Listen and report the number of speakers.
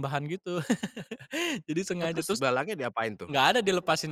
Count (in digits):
2